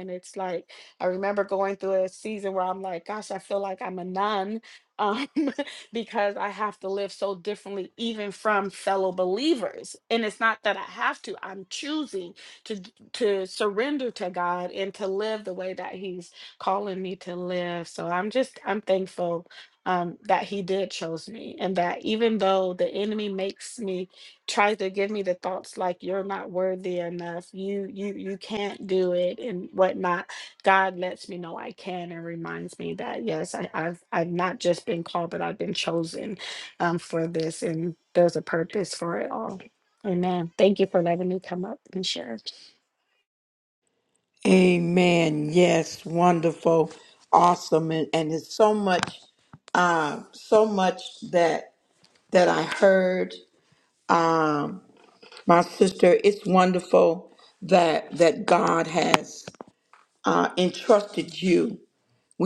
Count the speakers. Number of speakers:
two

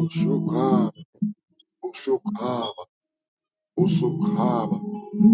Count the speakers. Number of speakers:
one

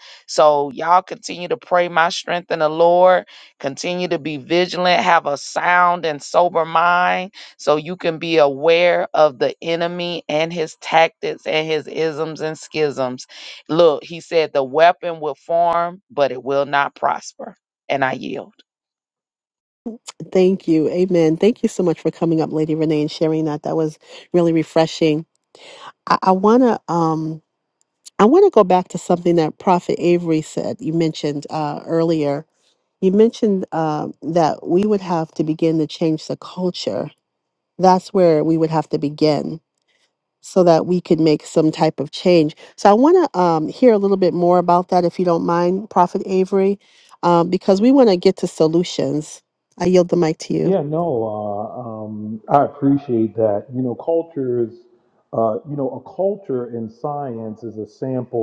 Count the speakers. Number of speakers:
three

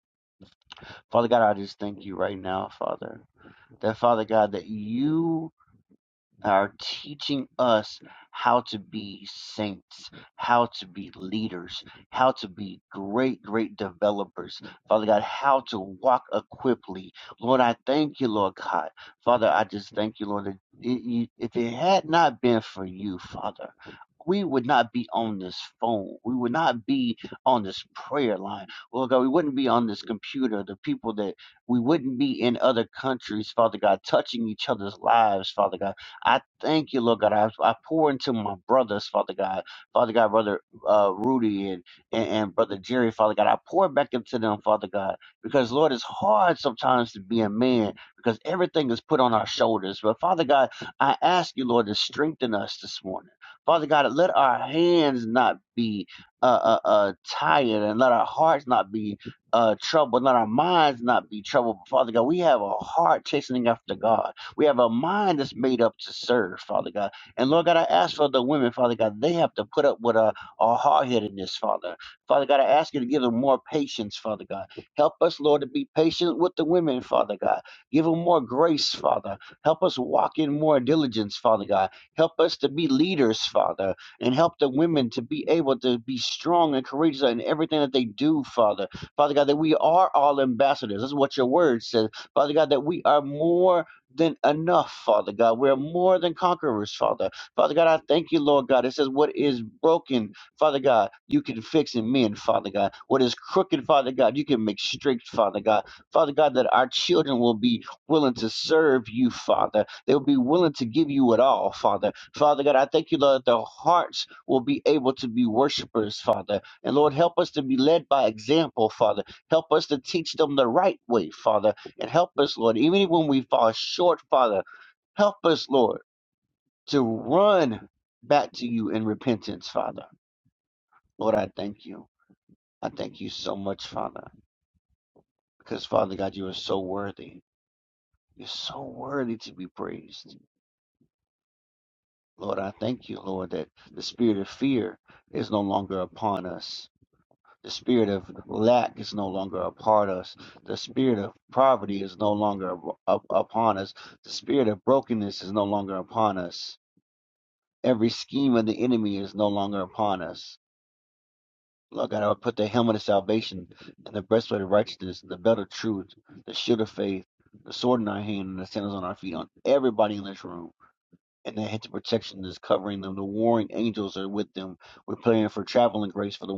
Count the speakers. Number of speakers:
one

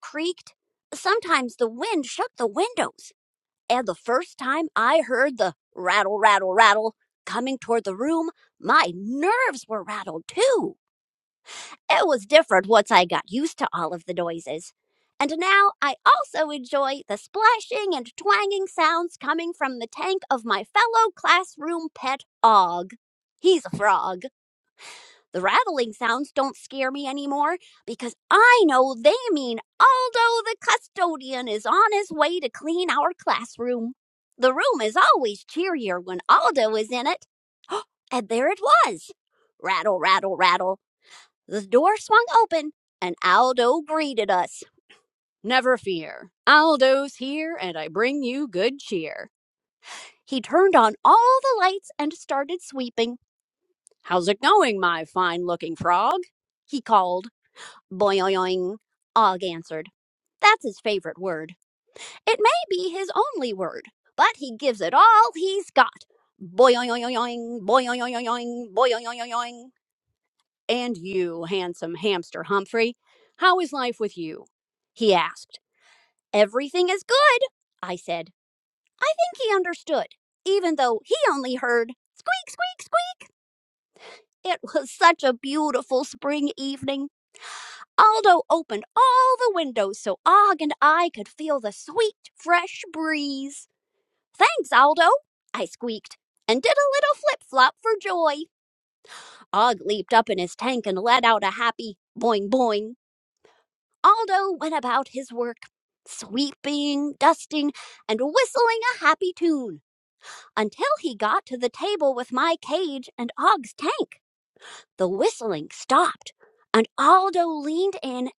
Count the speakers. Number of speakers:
one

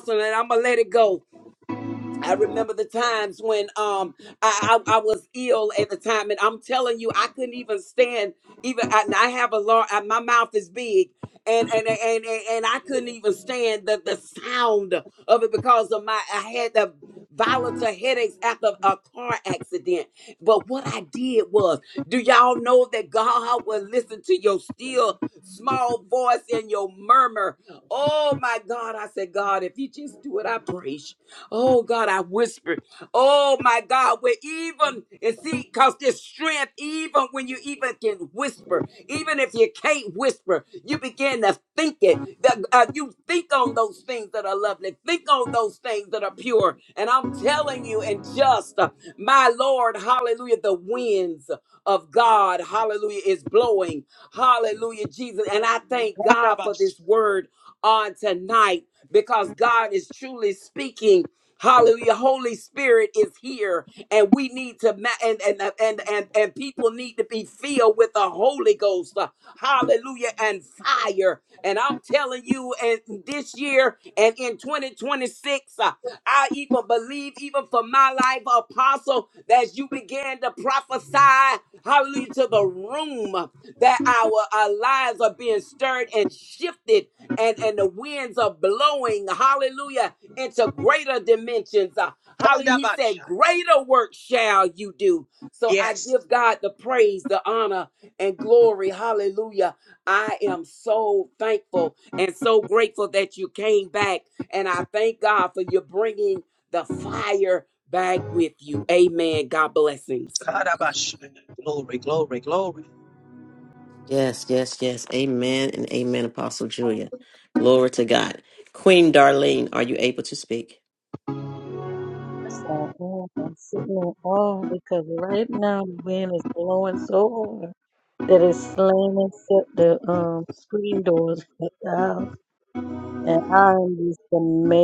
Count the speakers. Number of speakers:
four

